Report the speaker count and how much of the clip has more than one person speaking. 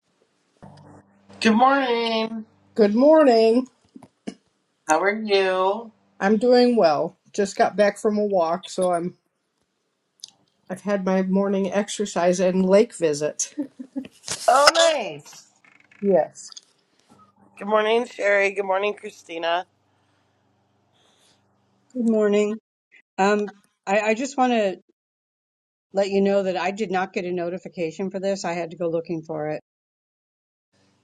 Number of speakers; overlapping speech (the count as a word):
three, no overlap